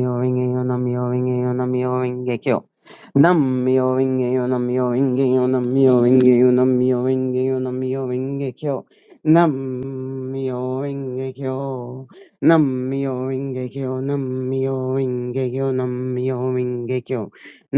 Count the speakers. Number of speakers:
one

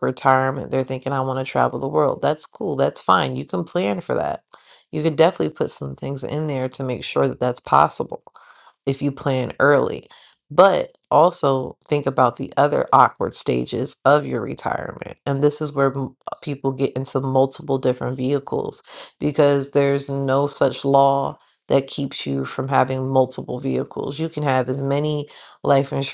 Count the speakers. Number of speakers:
one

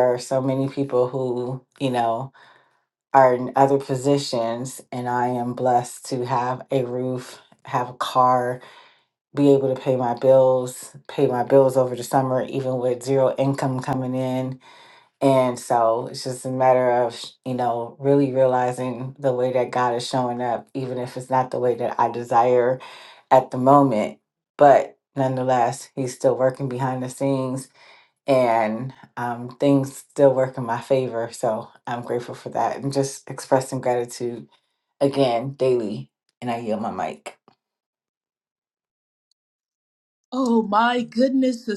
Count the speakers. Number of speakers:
two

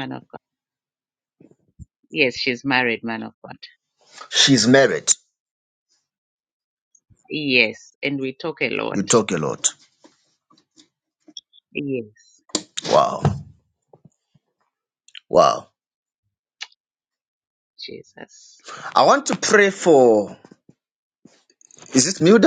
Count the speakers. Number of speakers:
two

